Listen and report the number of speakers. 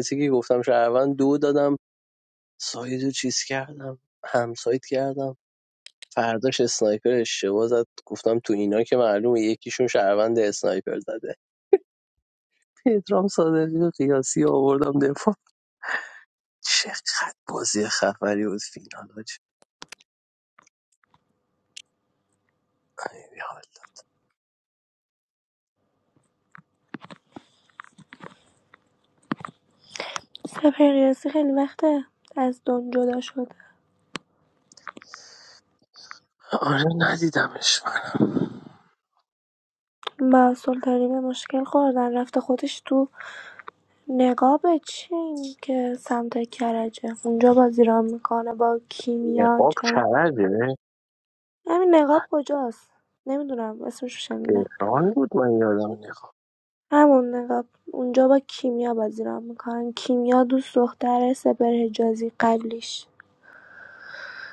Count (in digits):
2